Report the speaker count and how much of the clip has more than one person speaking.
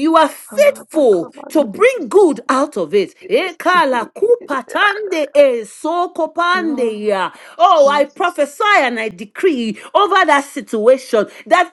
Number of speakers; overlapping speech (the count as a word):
two, about 18%